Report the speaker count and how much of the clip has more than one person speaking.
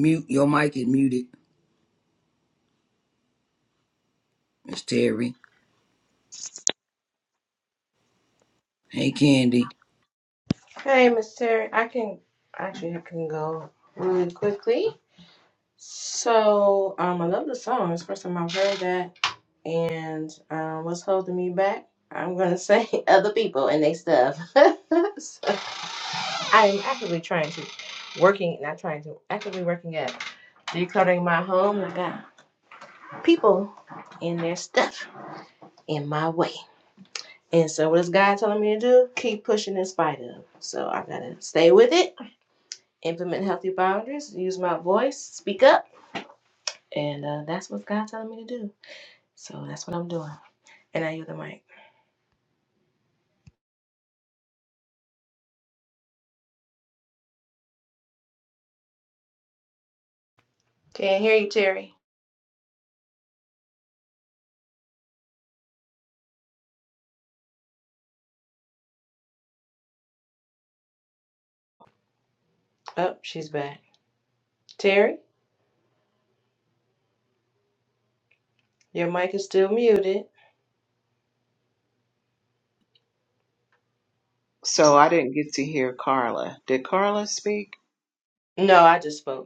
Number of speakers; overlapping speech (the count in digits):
3, no overlap